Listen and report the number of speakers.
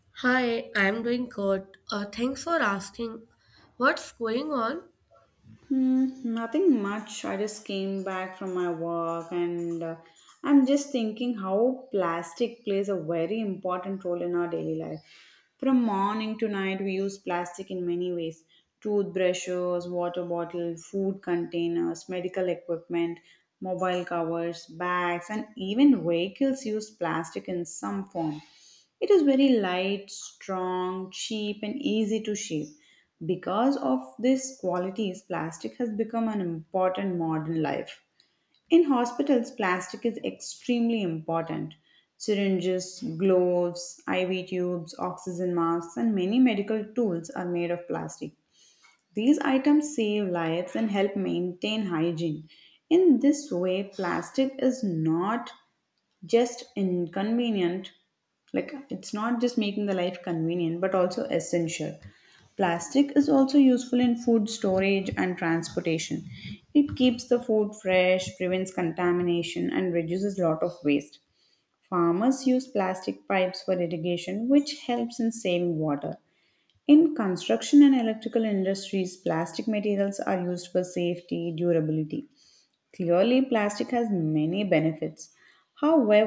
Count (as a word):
two